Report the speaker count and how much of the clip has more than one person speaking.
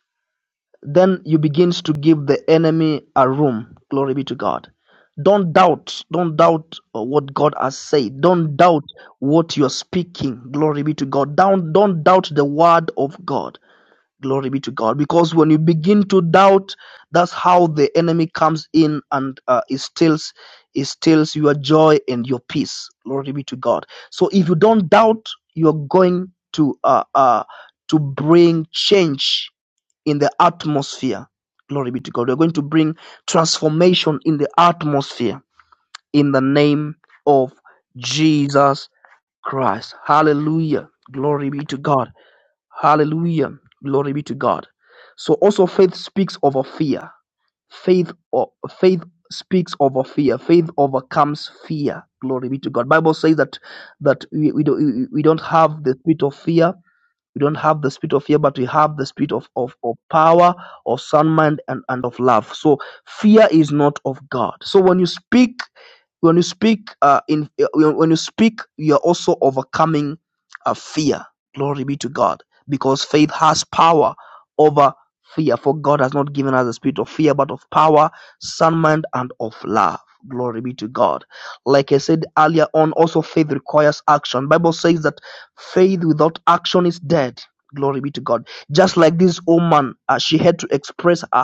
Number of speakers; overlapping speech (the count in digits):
1, no overlap